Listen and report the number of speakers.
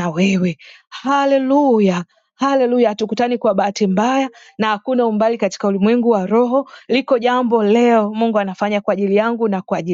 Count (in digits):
1